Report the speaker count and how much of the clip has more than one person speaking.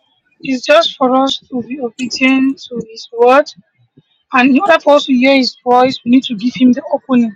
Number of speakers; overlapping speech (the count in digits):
1, no overlap